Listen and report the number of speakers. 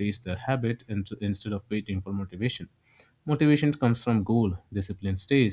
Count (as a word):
one